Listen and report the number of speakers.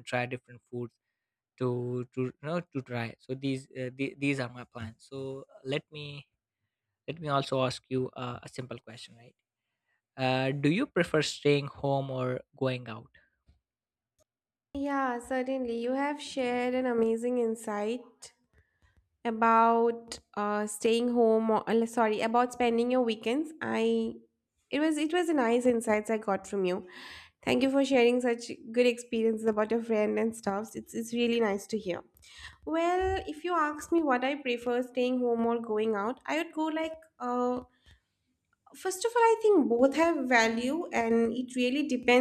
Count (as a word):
two